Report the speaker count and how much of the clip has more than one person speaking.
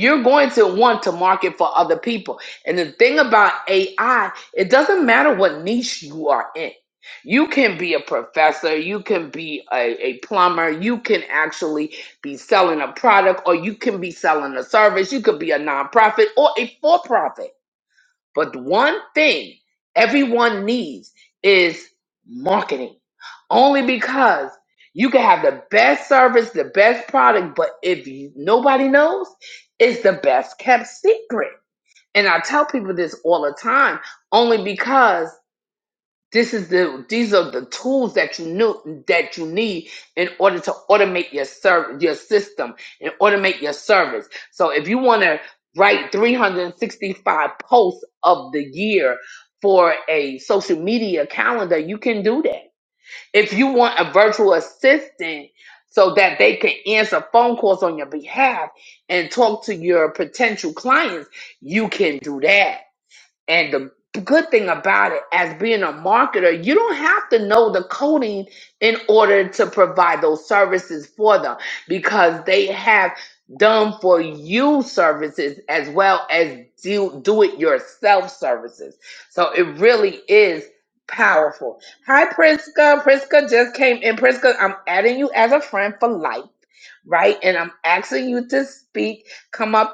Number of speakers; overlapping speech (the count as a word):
one, no overlap